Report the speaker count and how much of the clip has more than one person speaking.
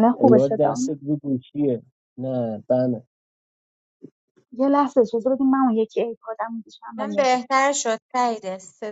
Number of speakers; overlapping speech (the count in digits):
3, about 12%